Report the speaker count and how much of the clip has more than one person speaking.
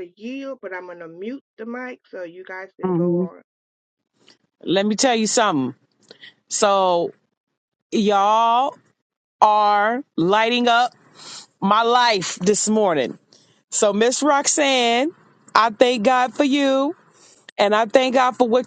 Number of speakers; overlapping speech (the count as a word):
two, about 2%